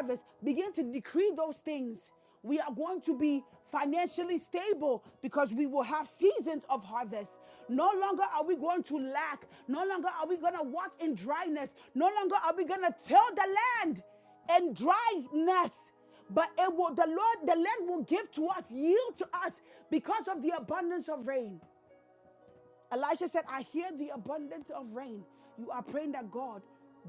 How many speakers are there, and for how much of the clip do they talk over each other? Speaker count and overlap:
1, no overlap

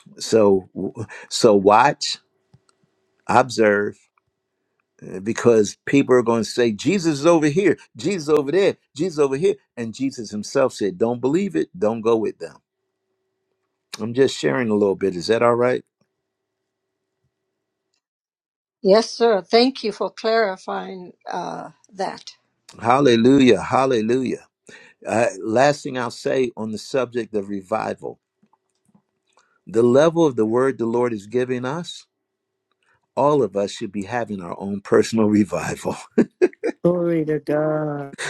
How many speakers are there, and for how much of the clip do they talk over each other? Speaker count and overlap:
3, no overlap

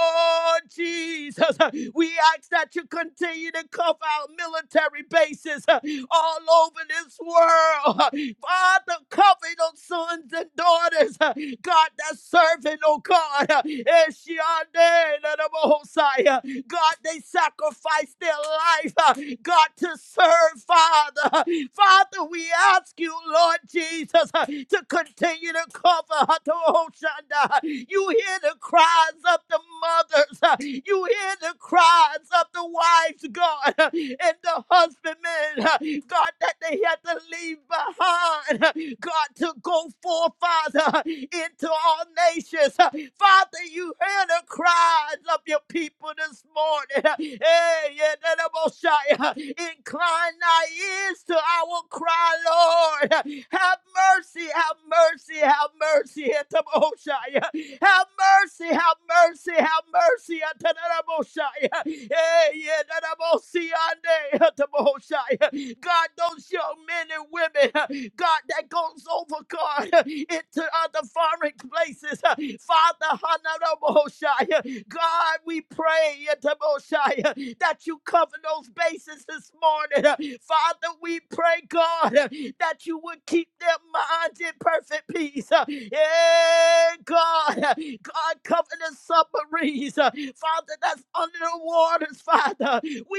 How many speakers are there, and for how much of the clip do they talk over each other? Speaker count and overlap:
1, no overlap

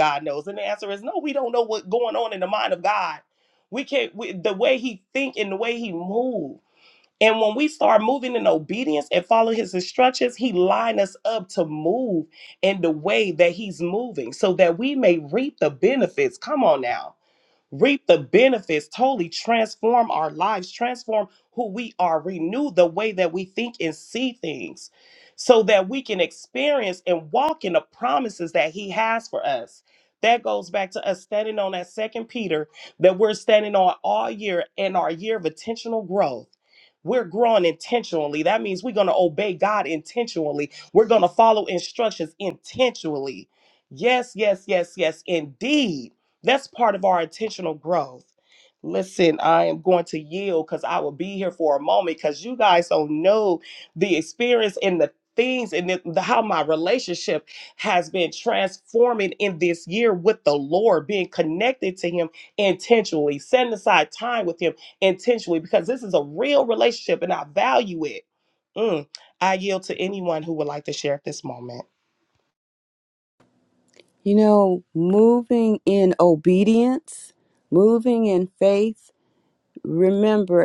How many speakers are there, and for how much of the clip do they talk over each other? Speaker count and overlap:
2, no overlap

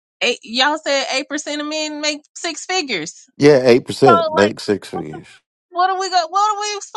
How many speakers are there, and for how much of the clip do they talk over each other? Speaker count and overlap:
2, about 11%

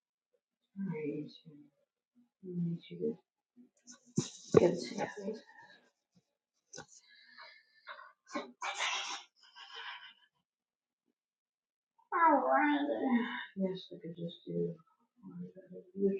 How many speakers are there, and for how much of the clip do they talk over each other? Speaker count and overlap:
1, no overlap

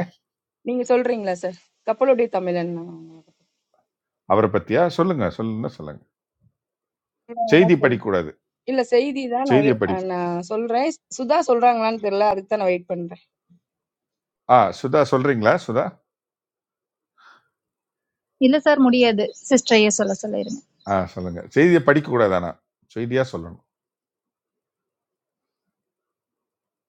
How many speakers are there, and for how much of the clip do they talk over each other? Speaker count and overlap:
3, about 2%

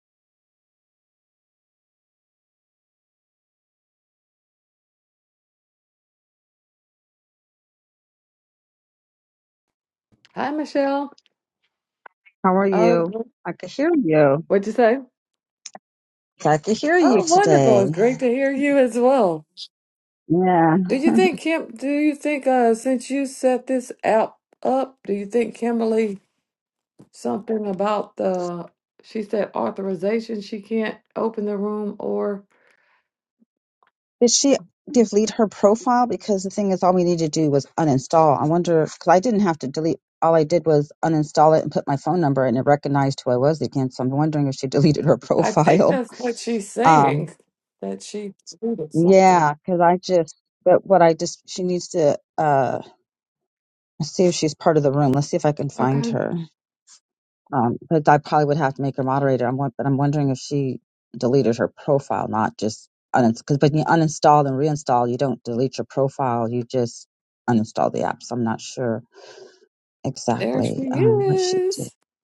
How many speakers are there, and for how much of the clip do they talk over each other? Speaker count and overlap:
2, about 6%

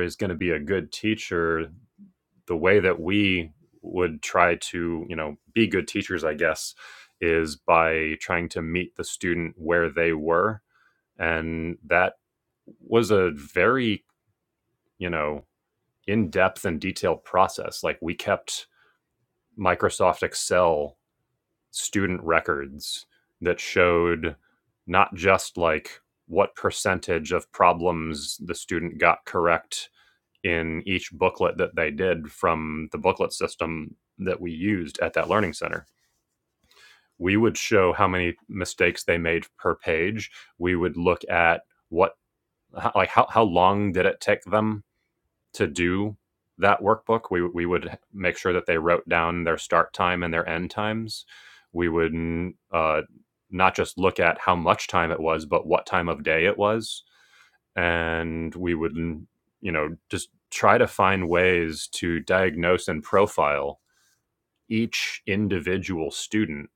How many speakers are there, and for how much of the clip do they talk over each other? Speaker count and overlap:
1, no overlap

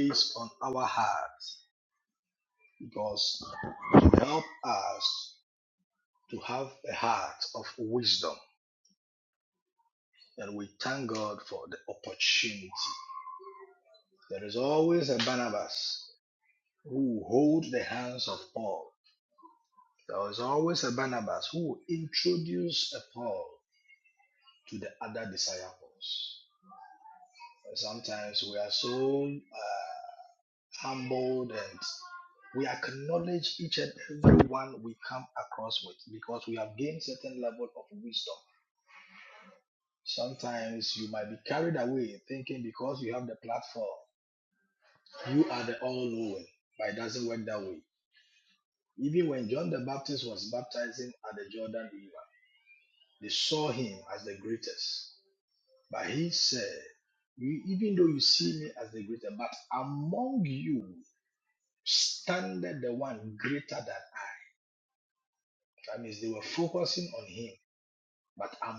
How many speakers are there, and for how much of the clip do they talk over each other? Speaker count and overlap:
1, no overlap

